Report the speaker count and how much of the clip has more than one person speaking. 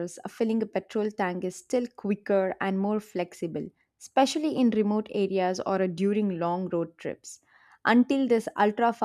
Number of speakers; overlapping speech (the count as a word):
one, no overlap